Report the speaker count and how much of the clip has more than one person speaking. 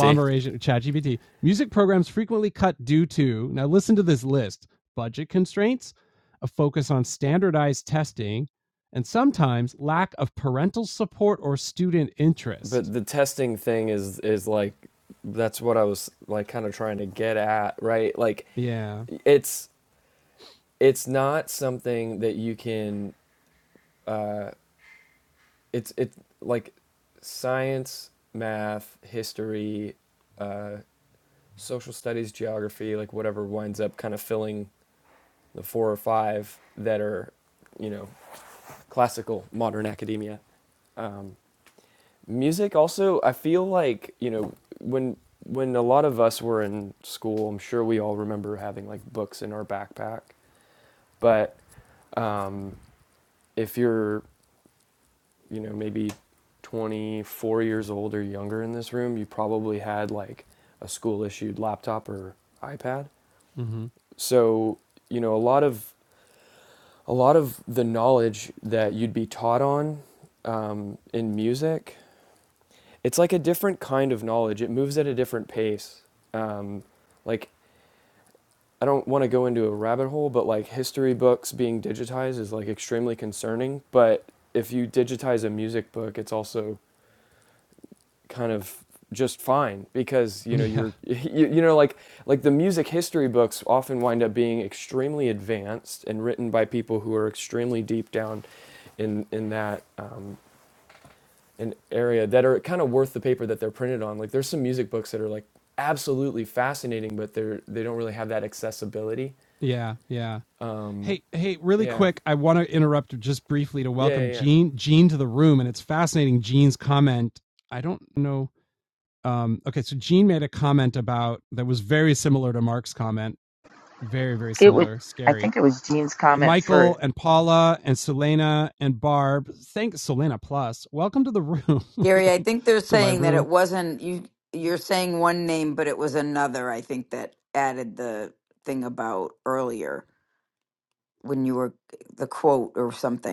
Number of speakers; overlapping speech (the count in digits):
4, about 2%